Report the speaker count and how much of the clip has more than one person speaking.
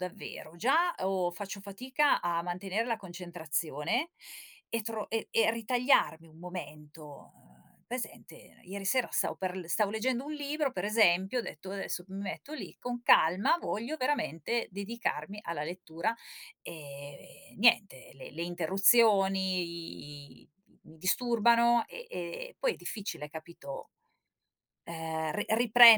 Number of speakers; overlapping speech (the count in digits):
1, no overlap